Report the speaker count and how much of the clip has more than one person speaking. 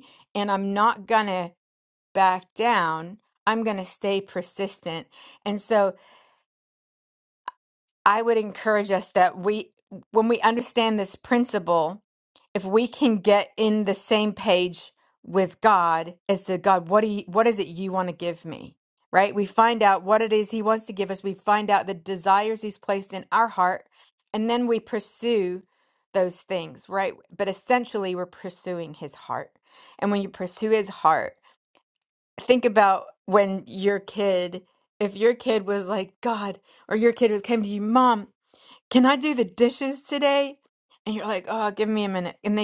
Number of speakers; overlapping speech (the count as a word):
one, no overlap